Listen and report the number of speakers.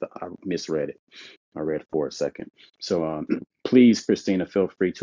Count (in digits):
1